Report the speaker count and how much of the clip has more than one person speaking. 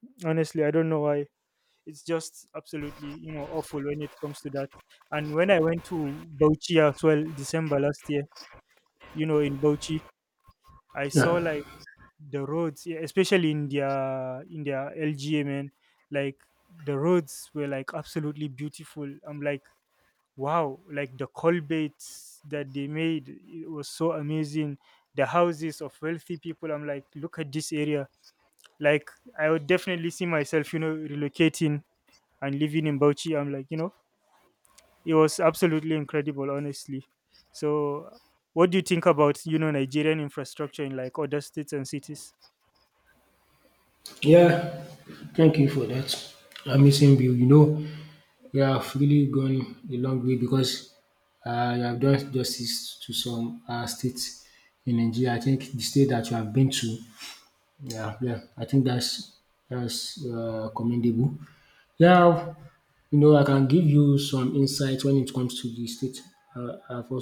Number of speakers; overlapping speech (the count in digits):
2, under 1%